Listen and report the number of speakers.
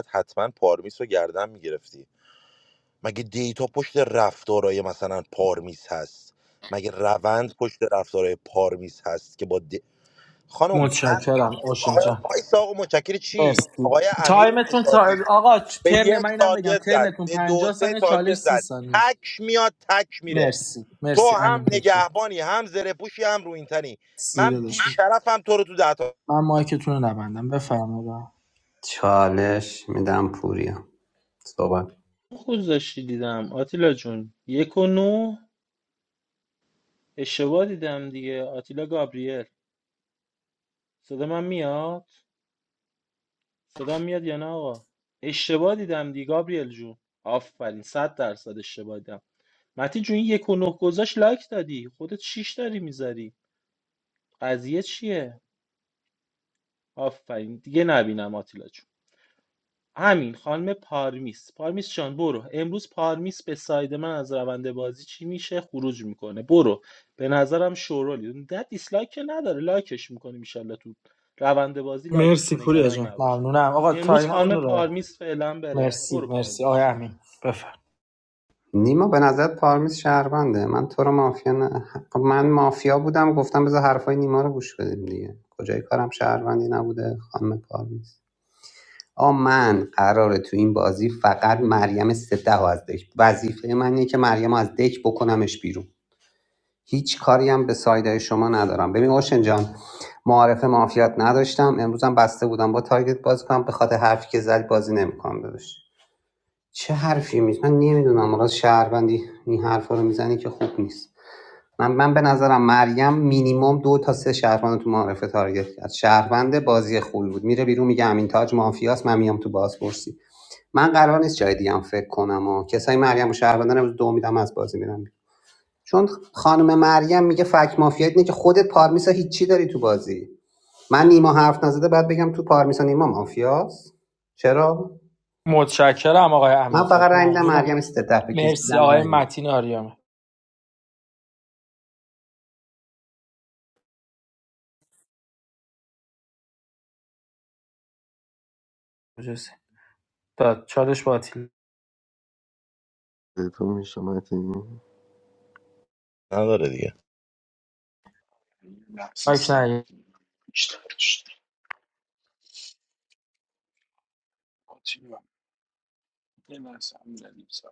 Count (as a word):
six